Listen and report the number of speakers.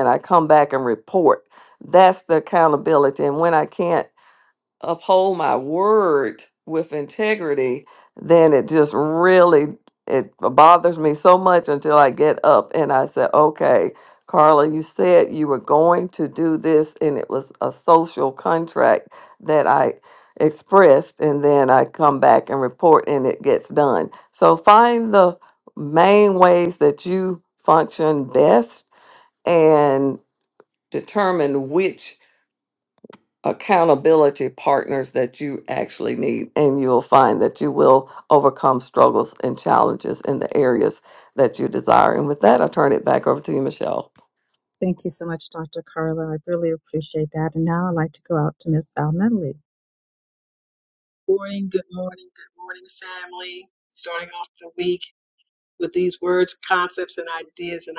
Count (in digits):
3